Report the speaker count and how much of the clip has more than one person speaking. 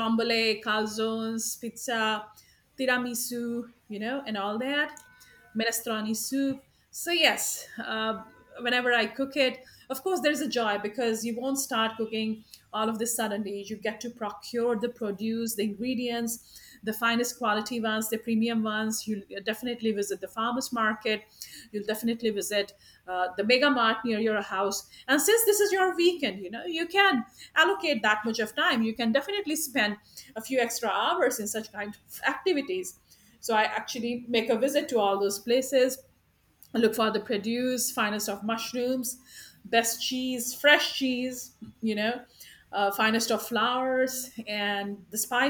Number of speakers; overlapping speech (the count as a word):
one, no overlap